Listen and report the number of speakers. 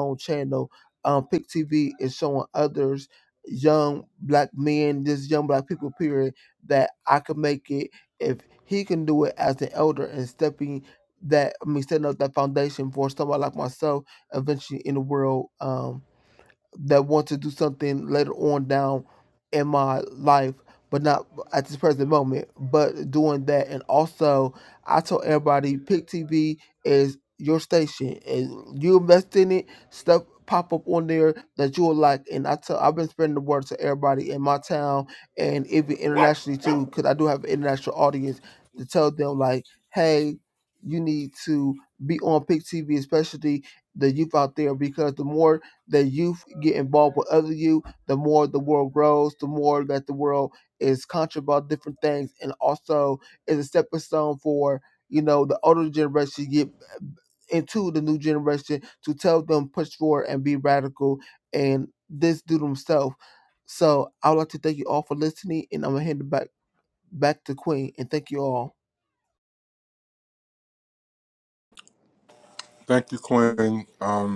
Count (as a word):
two